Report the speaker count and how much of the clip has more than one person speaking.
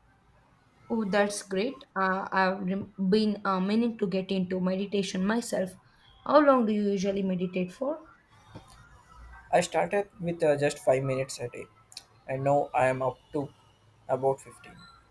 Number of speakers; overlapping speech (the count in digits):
2, no overlap